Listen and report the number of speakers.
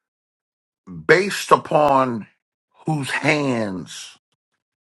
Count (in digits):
1